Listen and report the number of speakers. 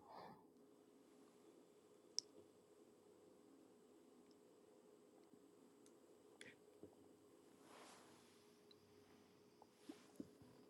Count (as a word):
zero